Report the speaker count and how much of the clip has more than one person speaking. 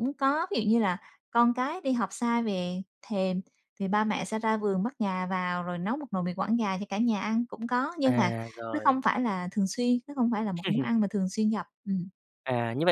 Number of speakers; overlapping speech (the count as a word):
two, about 4%